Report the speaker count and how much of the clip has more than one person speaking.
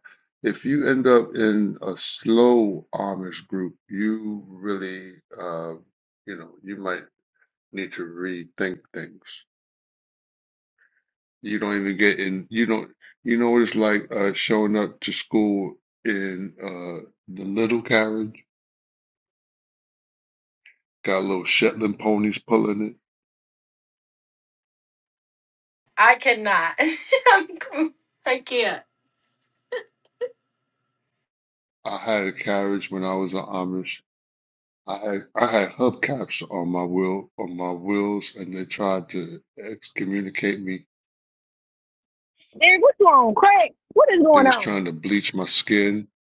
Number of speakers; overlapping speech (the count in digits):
3, about 1%